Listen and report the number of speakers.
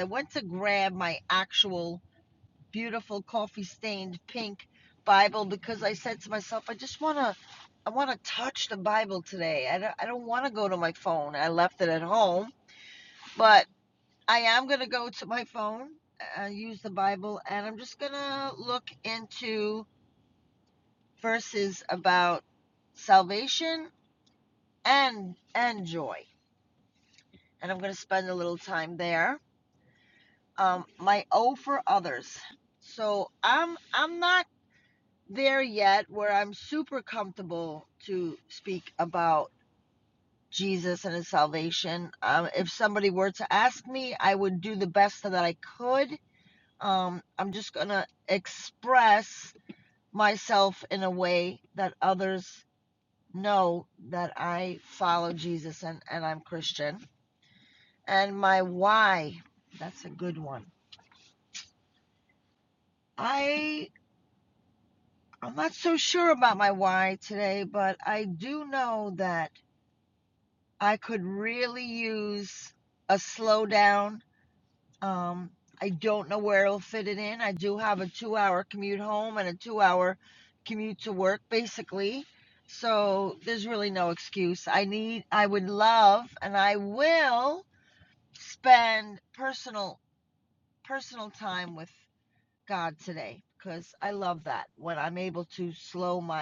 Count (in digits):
1